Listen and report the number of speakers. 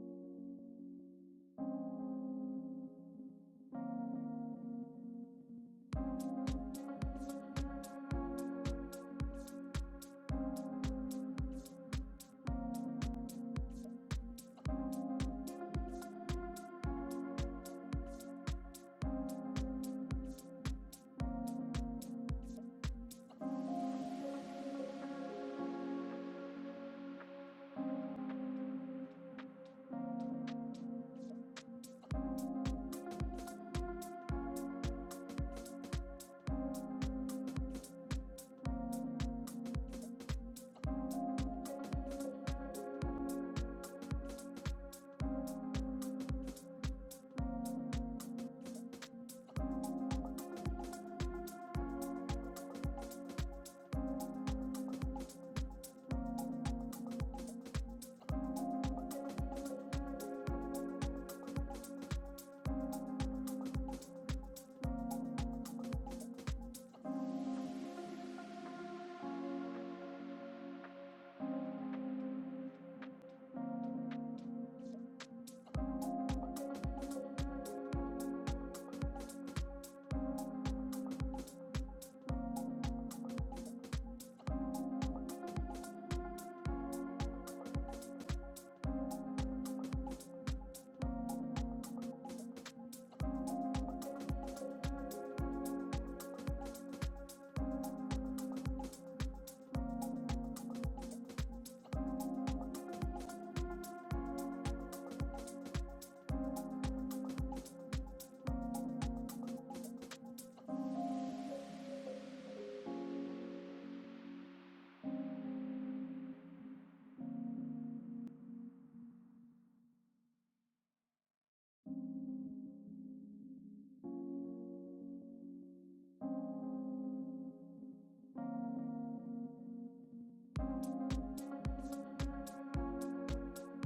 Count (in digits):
0